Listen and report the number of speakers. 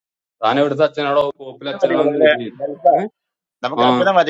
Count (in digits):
2